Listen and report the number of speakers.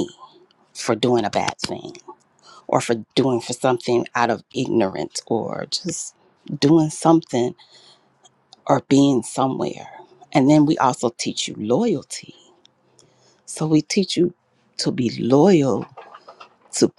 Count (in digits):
1